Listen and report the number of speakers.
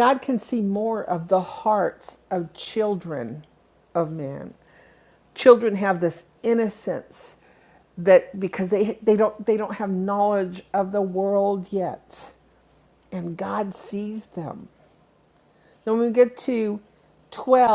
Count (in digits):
1